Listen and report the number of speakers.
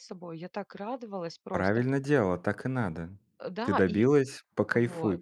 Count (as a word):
two